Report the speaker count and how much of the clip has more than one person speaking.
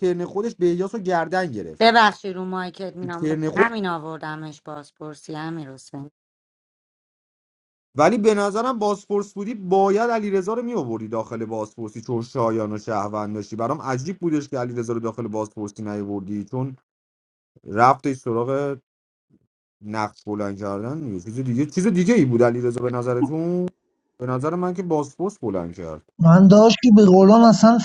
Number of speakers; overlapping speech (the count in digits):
3, about 2%